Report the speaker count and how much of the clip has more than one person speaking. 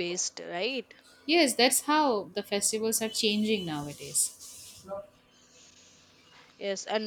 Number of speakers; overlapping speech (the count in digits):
2, no overlap